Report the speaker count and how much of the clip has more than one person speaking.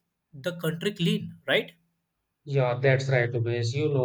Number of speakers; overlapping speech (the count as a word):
two, no overlap